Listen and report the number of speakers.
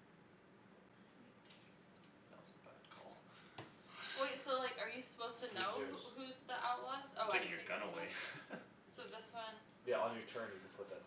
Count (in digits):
3